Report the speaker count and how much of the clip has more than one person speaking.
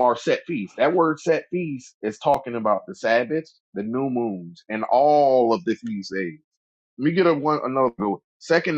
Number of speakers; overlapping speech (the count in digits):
1, no overlap